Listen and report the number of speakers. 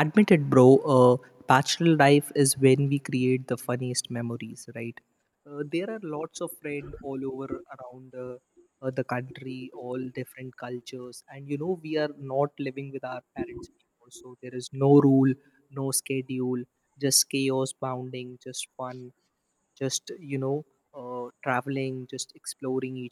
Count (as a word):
one